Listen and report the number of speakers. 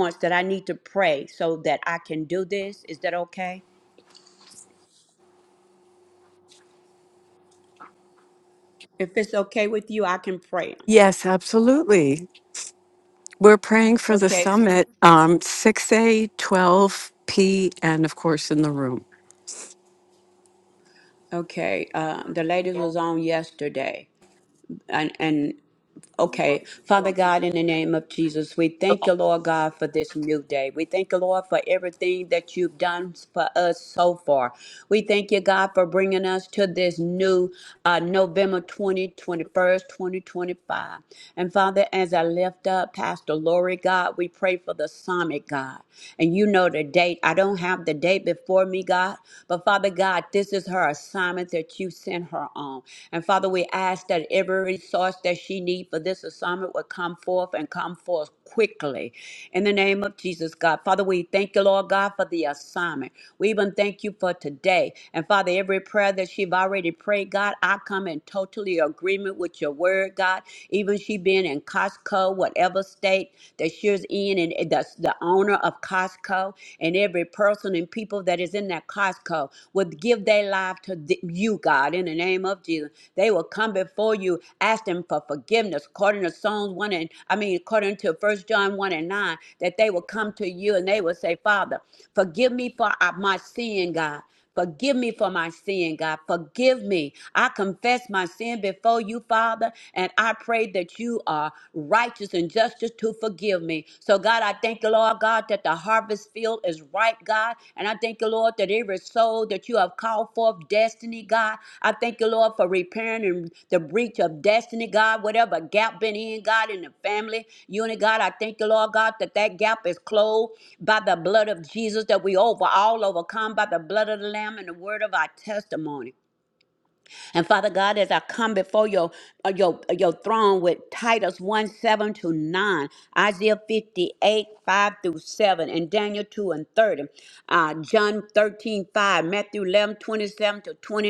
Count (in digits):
2